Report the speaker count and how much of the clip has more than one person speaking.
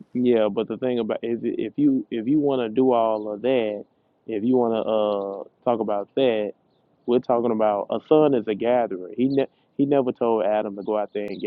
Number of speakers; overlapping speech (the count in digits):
1, no overlap